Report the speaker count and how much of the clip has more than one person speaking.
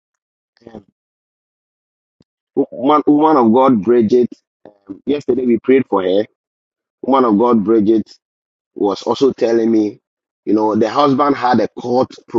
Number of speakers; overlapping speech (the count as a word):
one, no overlap